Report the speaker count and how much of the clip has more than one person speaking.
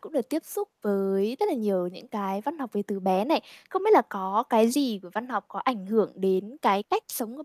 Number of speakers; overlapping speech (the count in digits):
1, no overlap